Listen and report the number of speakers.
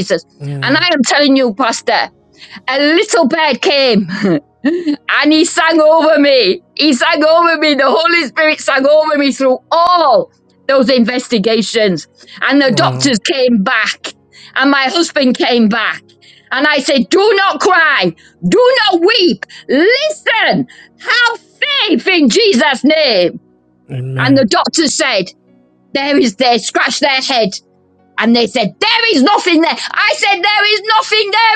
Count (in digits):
2